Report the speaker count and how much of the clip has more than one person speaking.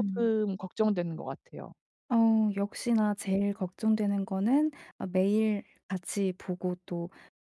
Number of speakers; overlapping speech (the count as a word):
two, about 4%